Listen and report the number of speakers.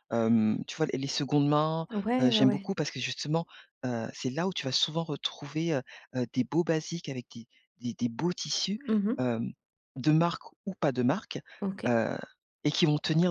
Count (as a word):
two